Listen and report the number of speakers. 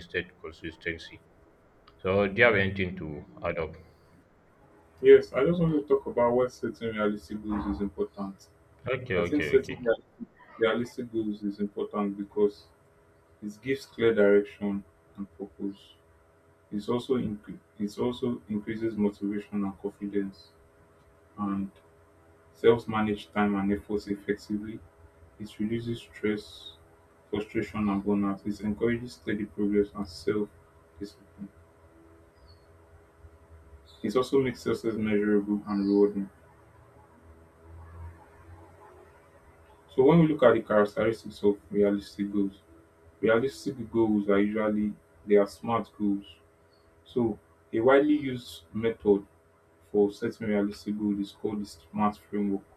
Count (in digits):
2